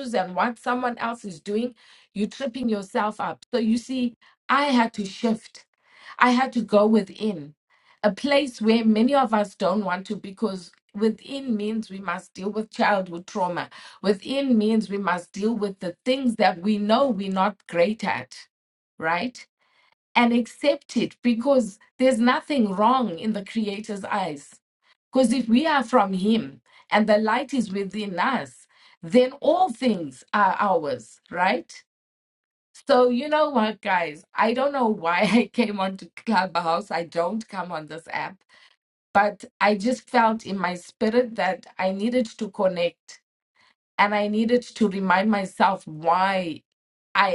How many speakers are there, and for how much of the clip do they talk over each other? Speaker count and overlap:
one, no overlap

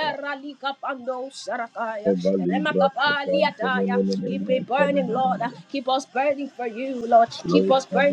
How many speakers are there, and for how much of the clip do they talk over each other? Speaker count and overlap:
two, about 40%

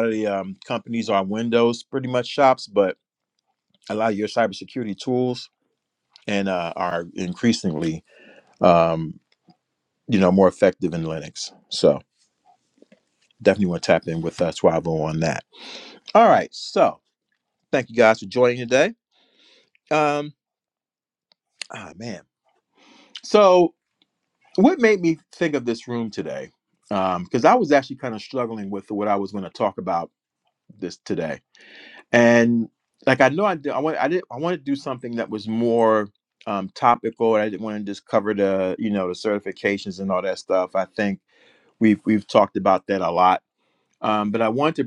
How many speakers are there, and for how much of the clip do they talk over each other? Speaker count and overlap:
one, no overlap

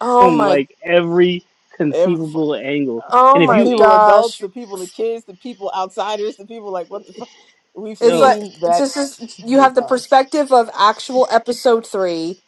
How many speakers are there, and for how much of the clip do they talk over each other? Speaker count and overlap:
three, about 26%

